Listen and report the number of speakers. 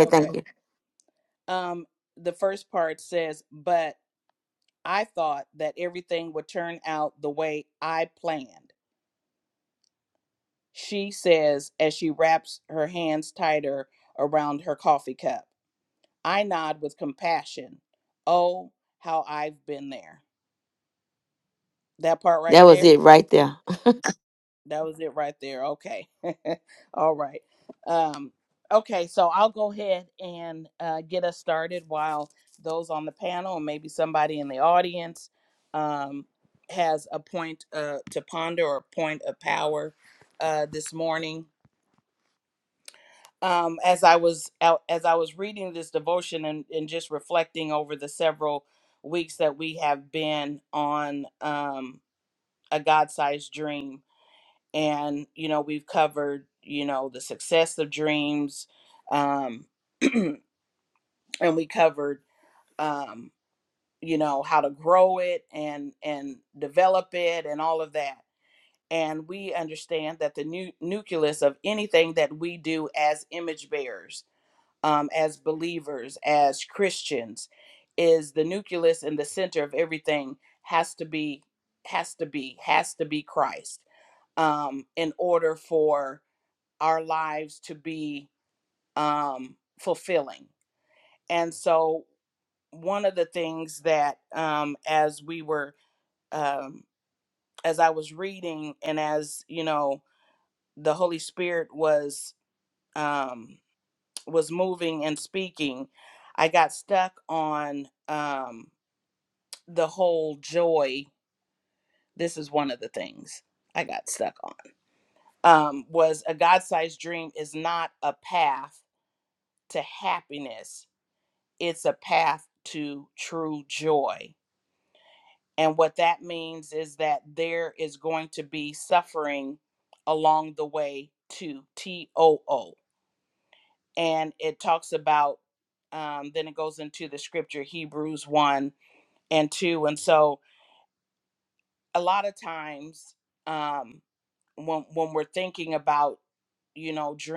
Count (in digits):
2